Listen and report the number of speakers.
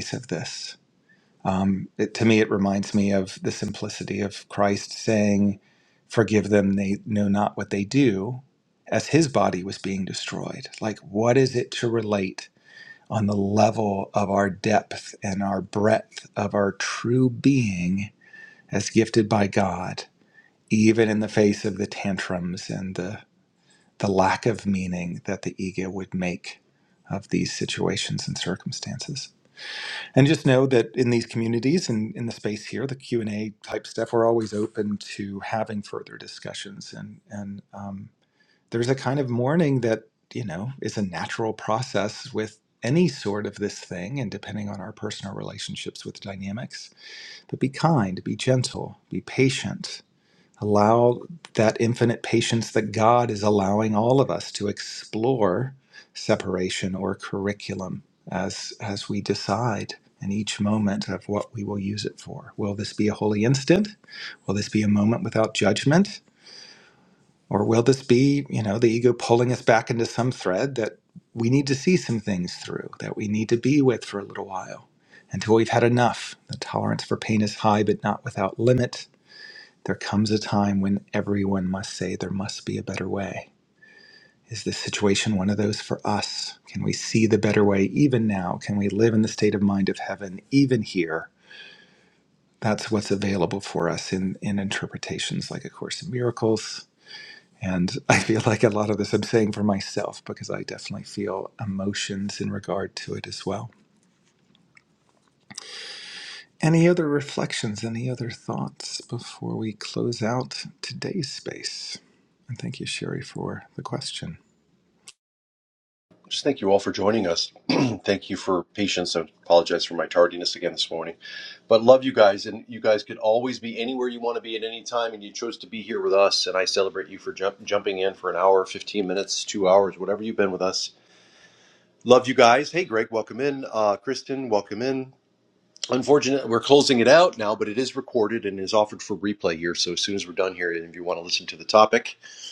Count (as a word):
two